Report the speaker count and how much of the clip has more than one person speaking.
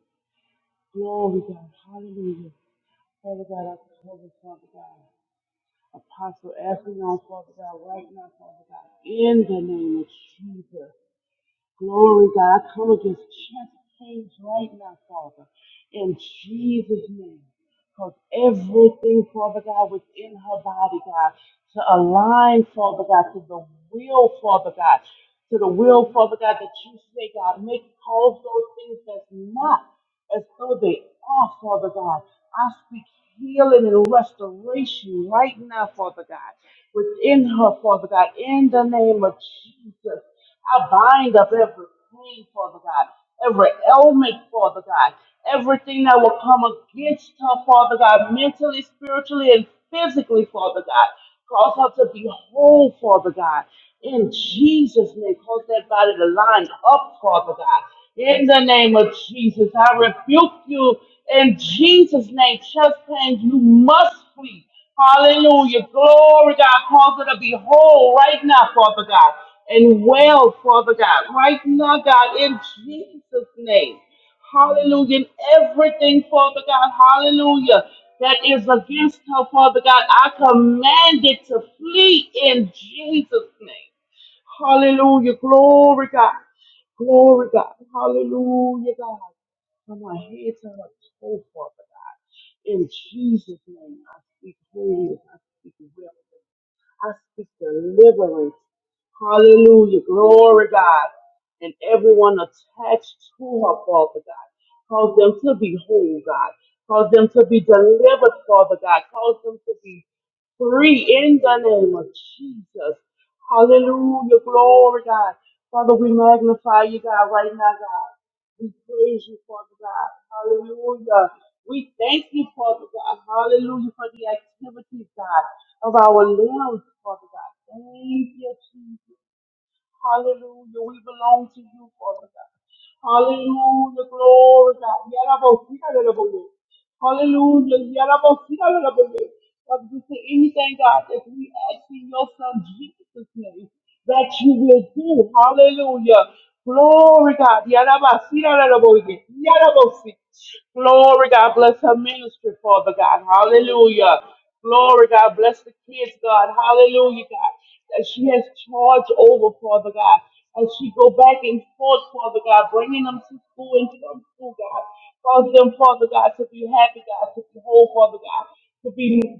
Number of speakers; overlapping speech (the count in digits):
1, no overlap